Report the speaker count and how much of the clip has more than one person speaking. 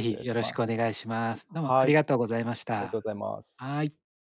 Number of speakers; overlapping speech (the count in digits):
2, about 25%